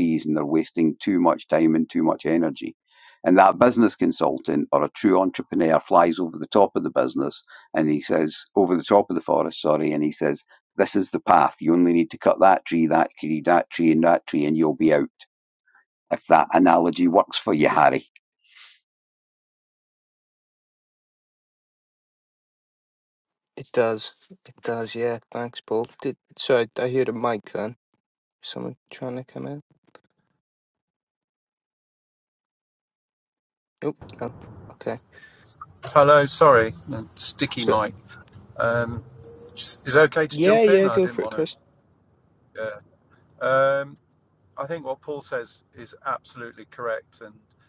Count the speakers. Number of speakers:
3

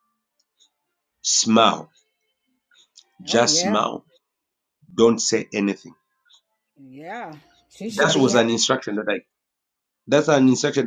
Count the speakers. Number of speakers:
2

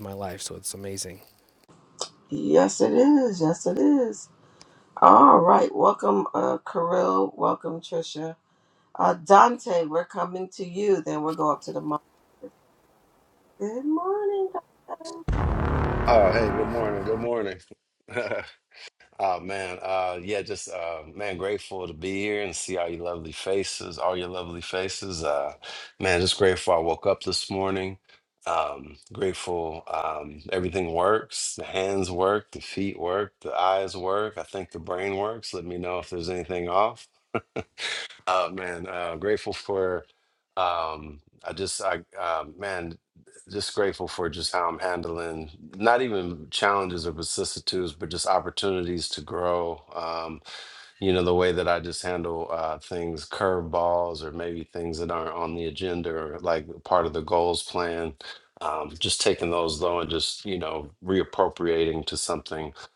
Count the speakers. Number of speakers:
3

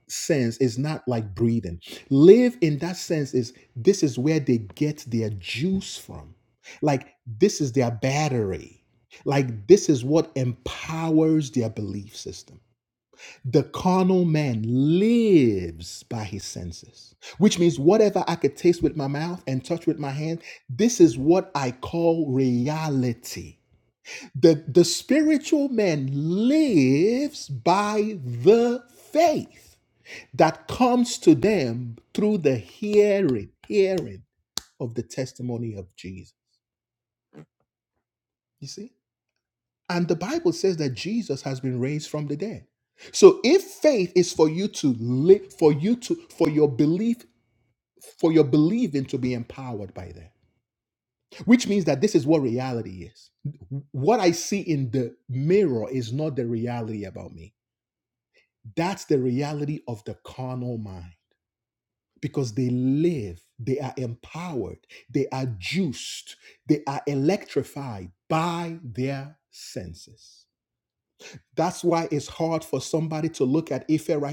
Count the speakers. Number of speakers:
1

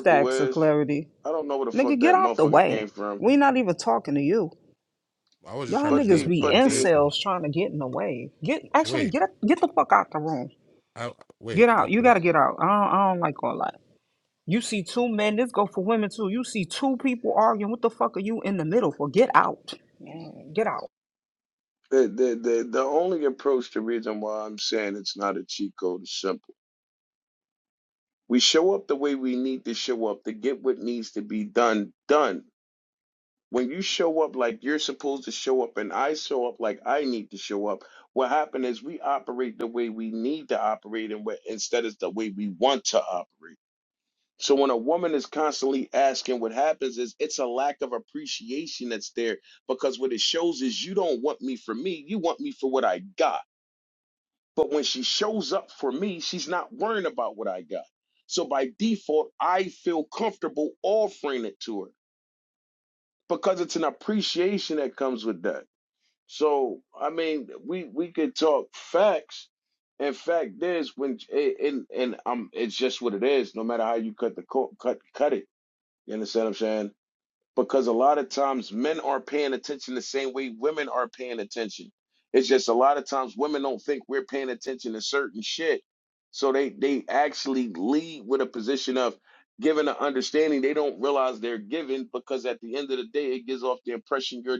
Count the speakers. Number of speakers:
3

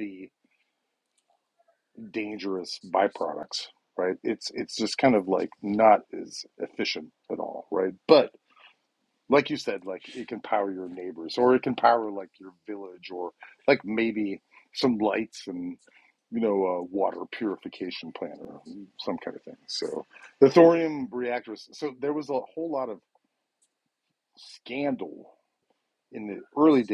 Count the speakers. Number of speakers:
1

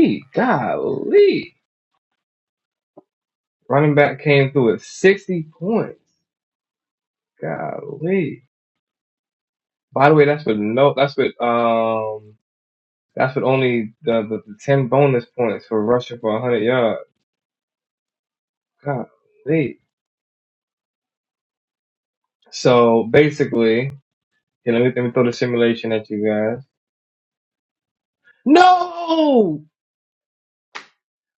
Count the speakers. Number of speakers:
1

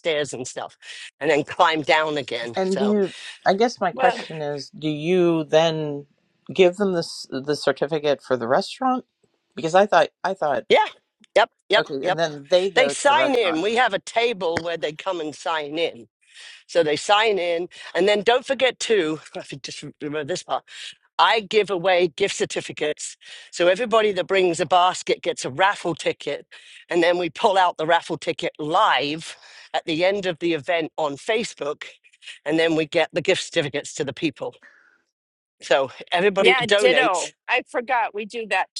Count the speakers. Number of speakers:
3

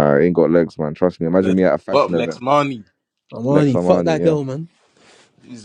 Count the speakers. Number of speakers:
3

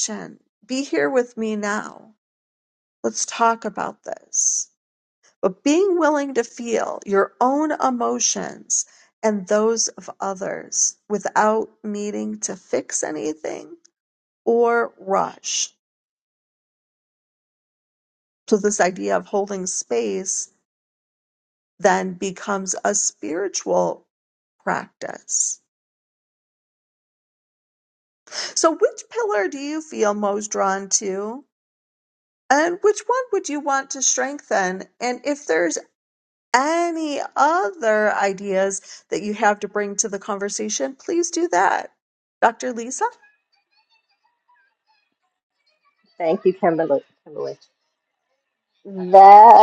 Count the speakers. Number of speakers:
2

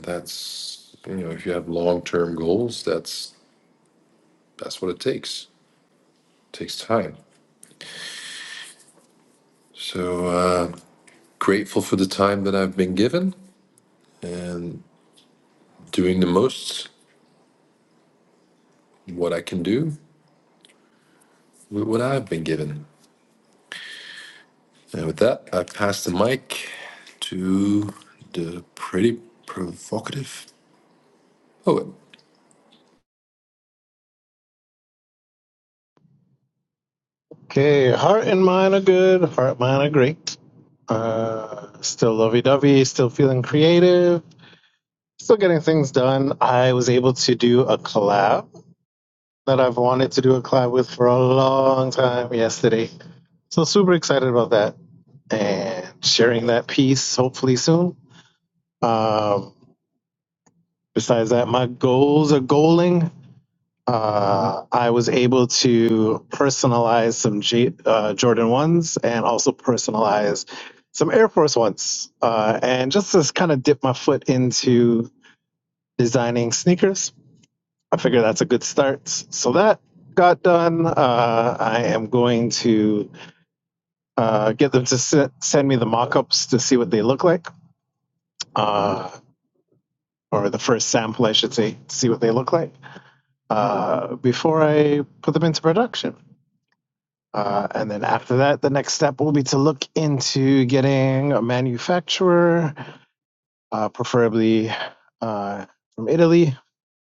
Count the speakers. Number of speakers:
2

